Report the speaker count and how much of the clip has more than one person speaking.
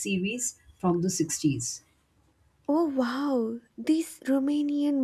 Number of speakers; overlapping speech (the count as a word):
two, no overlap